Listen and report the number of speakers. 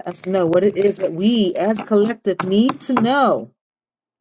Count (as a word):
one